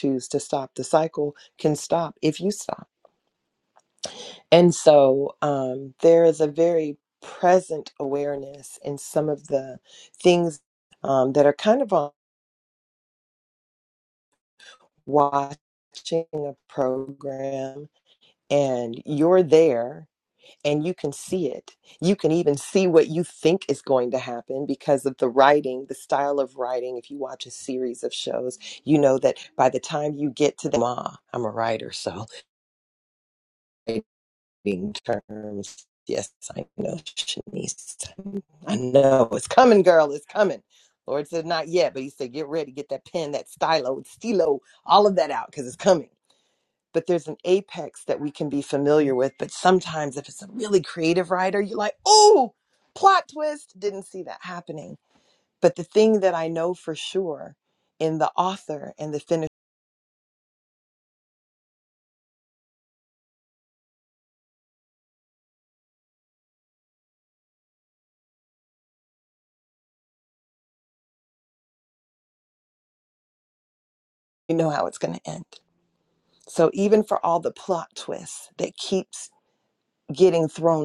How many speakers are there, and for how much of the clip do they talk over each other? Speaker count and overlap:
1, no overlap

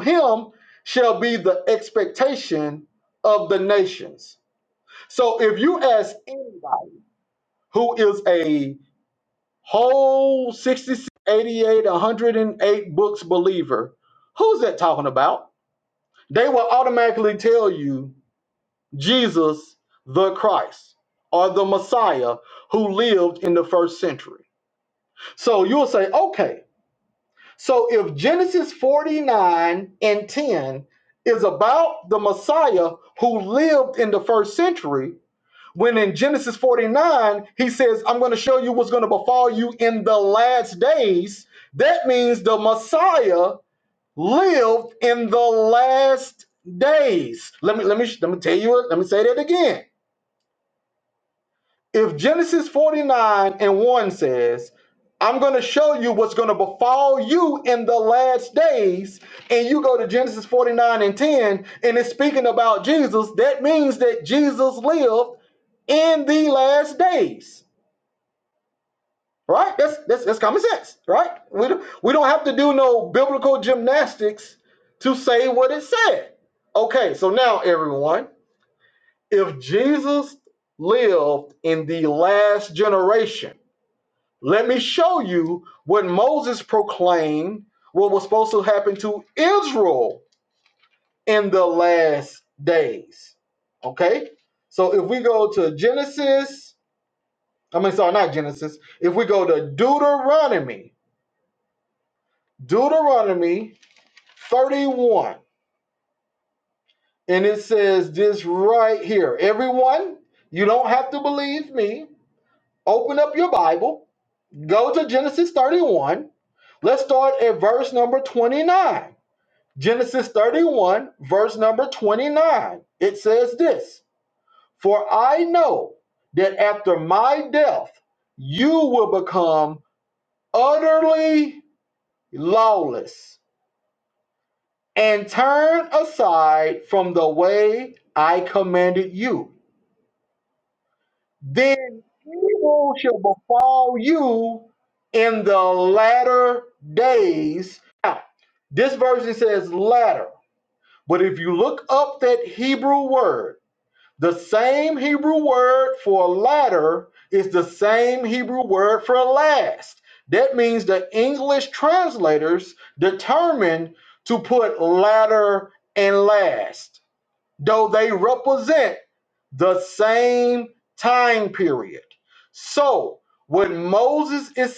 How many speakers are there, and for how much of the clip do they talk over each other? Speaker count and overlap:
1, no overlap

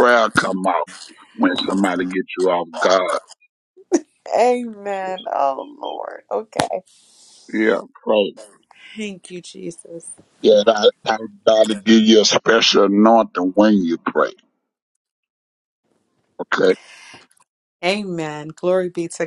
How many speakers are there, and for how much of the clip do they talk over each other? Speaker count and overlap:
2, no overlap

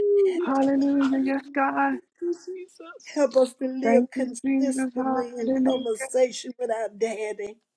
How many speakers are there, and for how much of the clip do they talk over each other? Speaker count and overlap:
3, about 38%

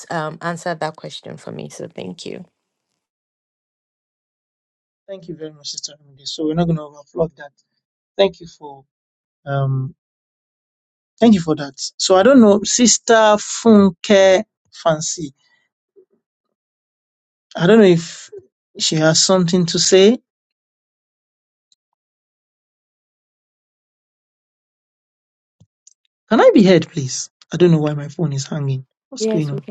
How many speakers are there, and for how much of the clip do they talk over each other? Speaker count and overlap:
2, about 1%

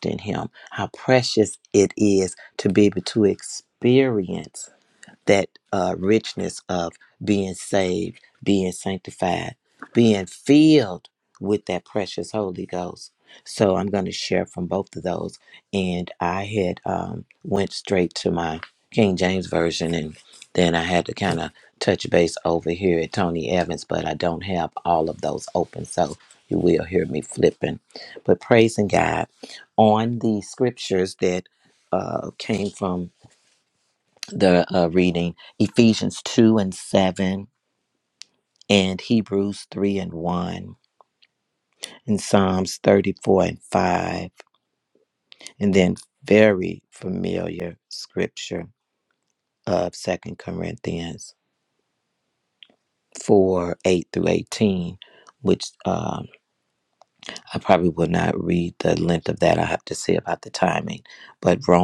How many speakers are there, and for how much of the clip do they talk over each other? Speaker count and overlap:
1, no overlap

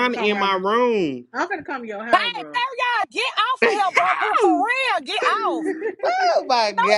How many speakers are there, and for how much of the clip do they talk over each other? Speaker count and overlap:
3, about 24%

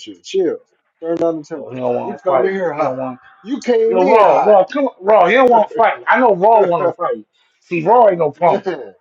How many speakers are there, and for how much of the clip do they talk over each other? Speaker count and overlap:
2, about 21%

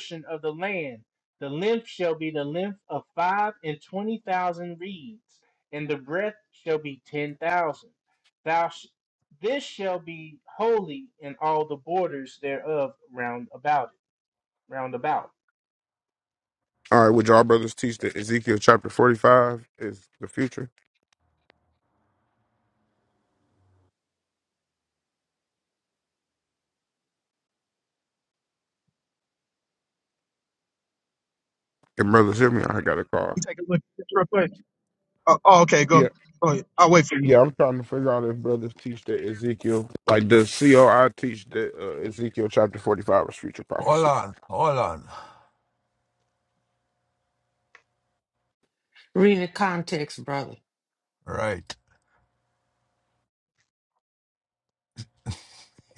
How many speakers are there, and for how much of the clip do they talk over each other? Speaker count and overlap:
5, about 1%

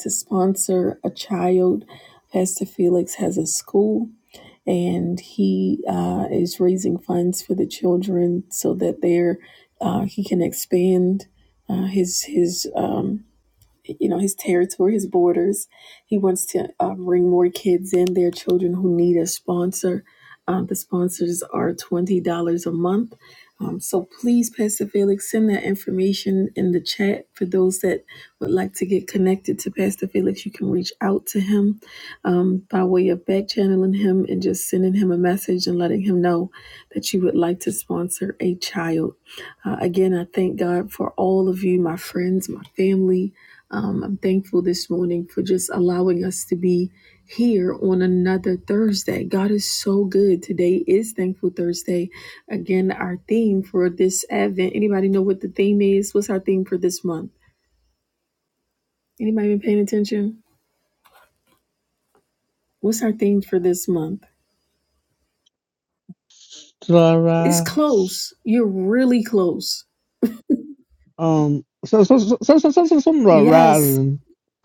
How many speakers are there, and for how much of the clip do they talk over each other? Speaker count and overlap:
2, about 1%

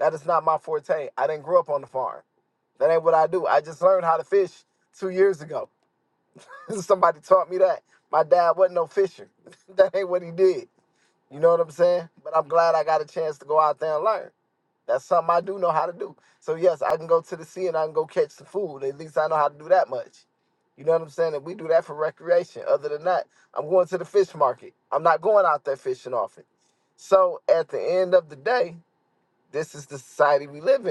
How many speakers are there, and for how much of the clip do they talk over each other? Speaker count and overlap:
1, no overlap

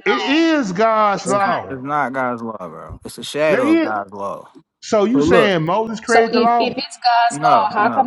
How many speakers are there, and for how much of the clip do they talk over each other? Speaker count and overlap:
3, about 48%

